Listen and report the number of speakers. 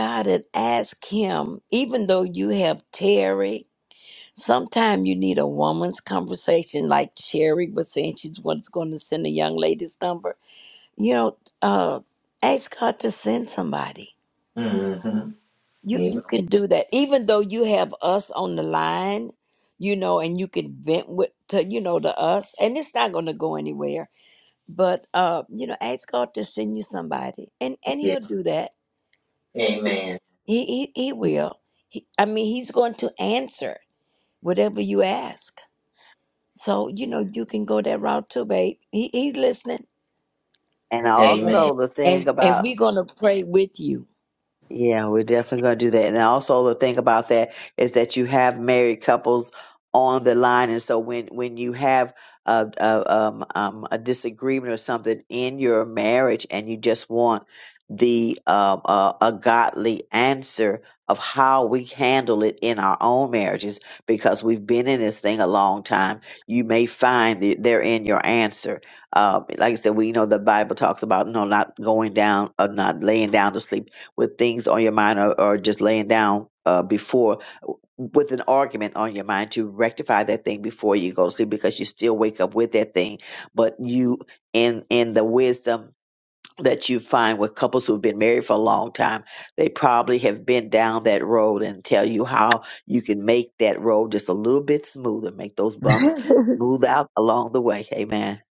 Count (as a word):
three